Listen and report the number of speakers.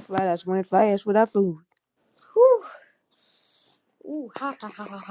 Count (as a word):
two